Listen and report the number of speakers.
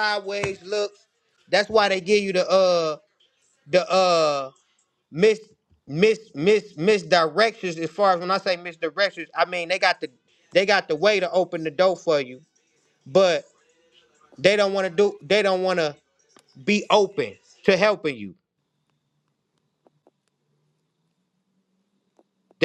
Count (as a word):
one